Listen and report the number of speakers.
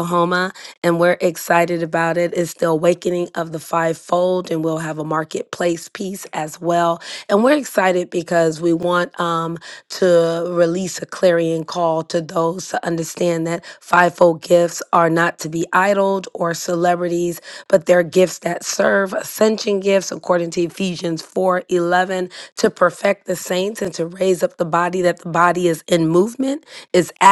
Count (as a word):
one